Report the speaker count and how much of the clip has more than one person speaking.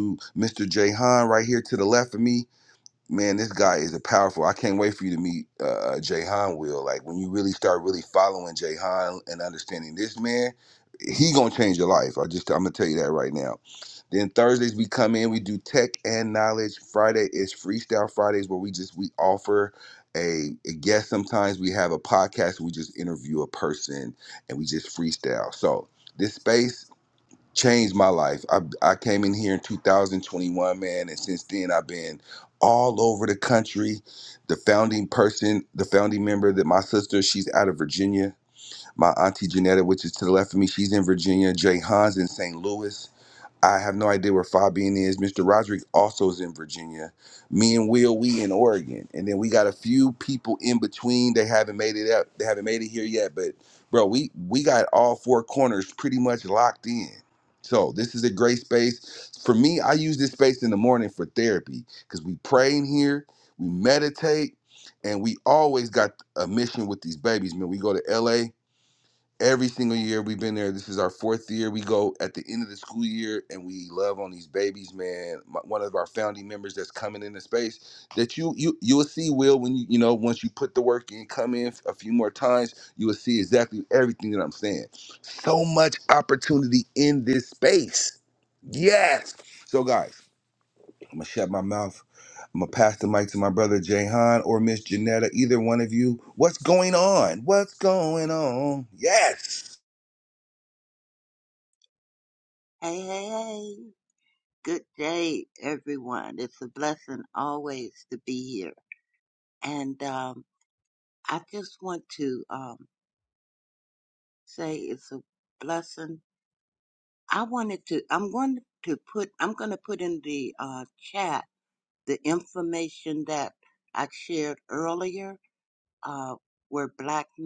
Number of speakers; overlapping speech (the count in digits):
2, no overlap